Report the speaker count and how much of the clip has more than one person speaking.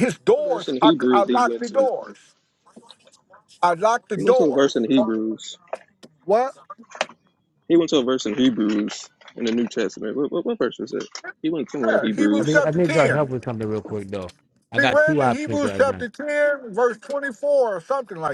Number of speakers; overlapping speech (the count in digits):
3, about 26%